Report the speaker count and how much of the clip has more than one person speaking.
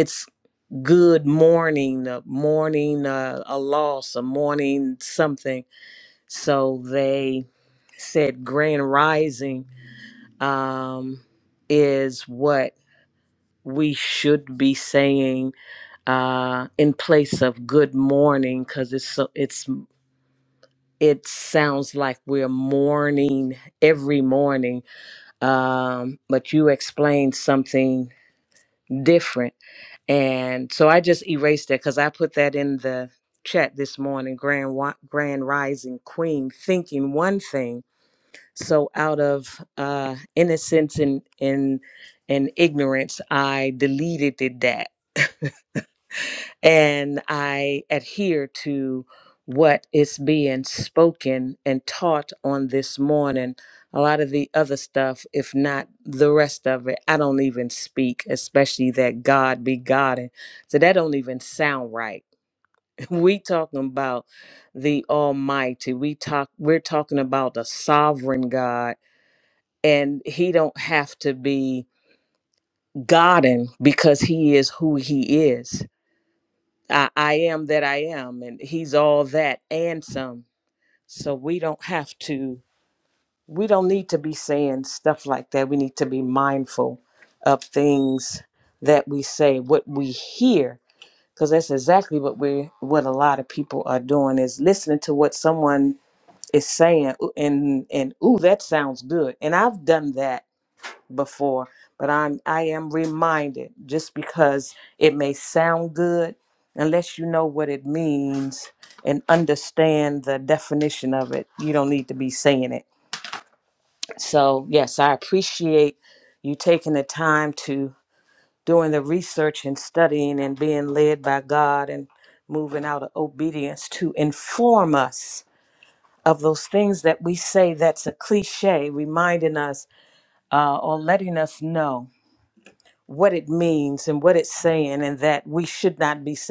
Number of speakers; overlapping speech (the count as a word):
one, no overlap